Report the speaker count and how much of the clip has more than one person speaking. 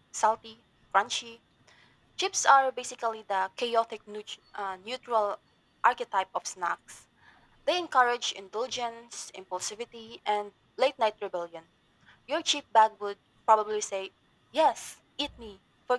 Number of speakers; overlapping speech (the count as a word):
one, no overlap